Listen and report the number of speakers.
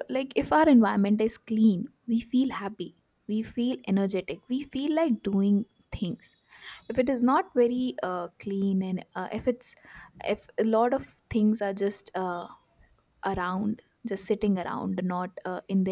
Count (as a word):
one